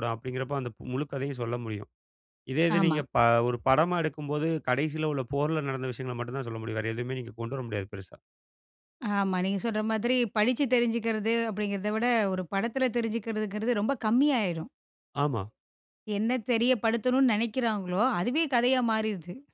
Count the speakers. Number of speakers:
two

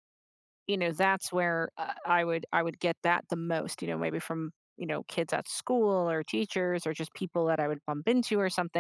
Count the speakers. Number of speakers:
one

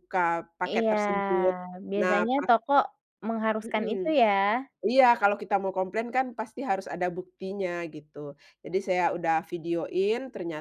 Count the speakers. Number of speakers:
two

